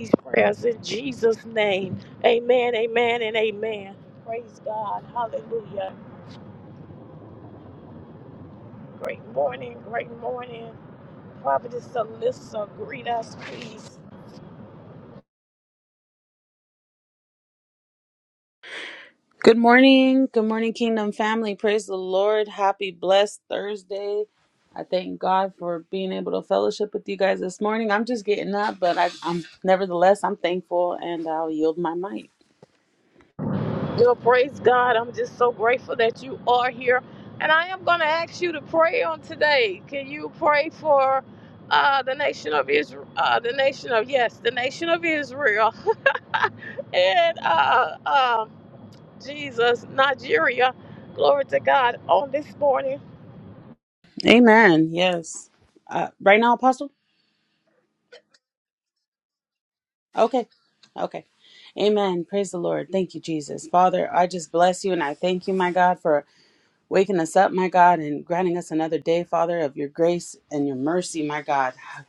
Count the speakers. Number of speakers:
two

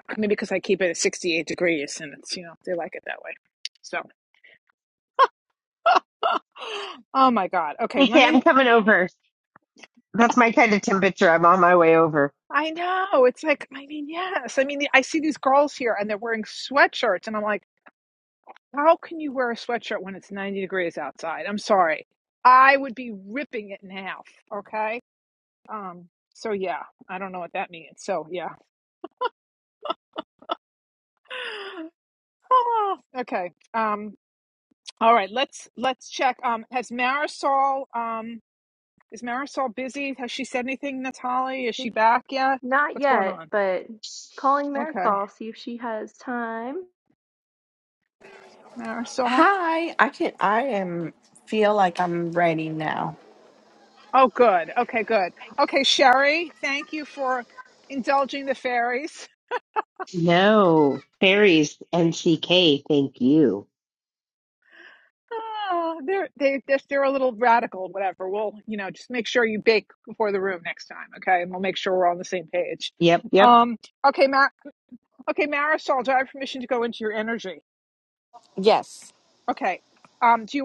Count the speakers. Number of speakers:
four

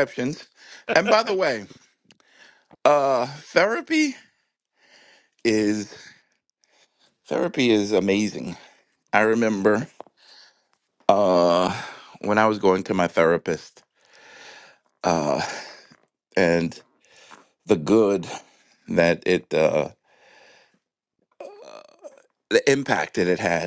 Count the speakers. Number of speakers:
one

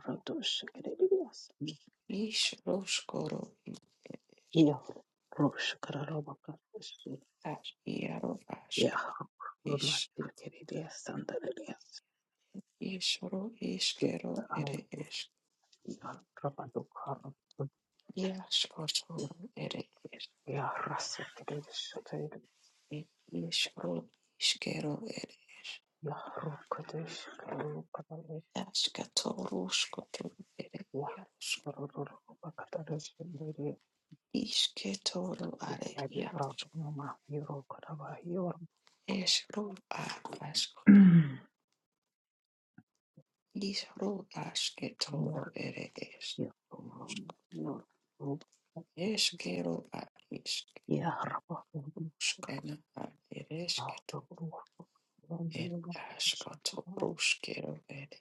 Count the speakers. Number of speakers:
two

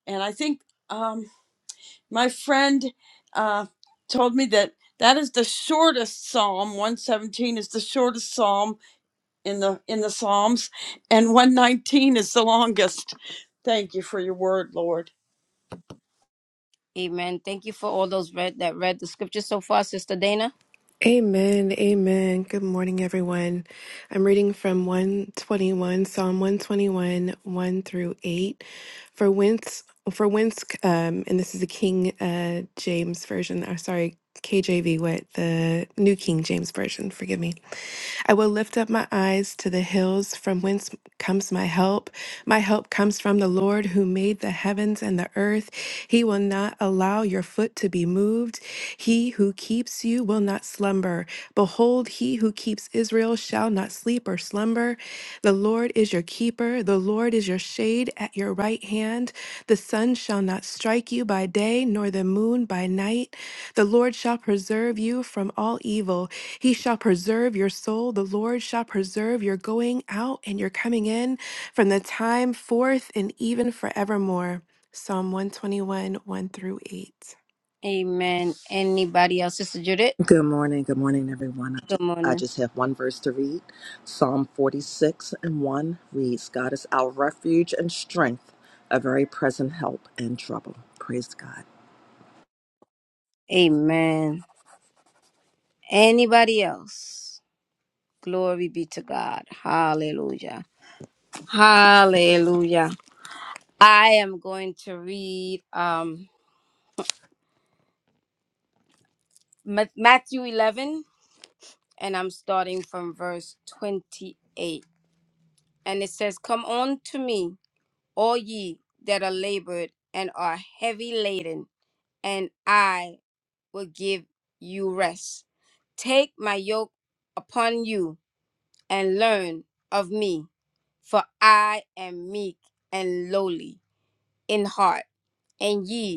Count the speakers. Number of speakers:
four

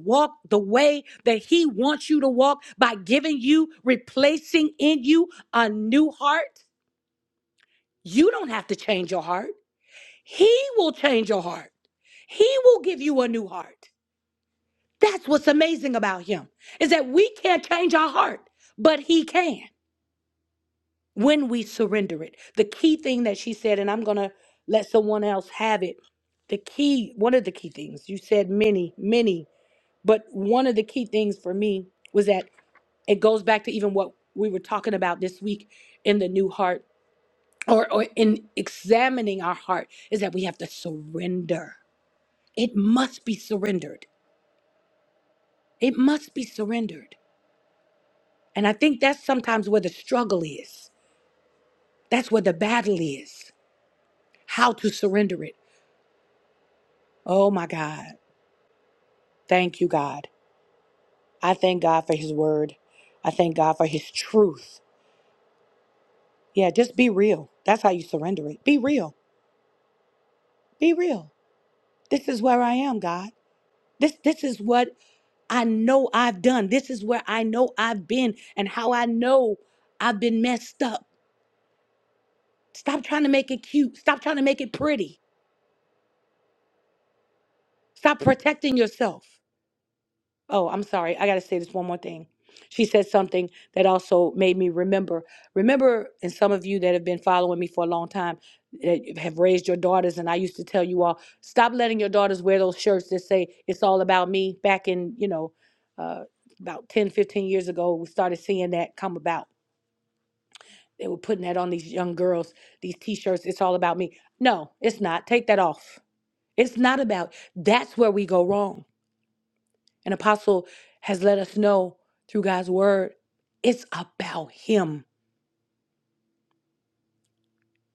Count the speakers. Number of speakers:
one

